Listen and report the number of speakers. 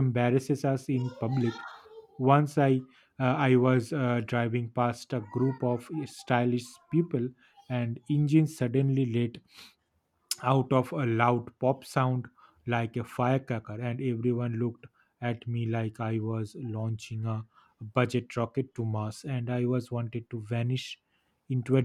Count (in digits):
1